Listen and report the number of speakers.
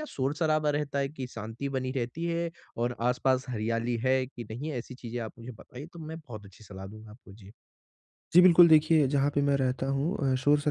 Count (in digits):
2